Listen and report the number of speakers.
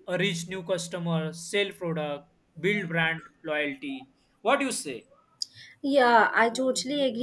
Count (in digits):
2